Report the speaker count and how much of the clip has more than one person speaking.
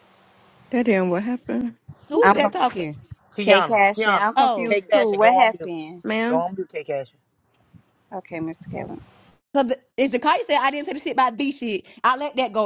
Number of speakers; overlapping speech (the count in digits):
4, about 21%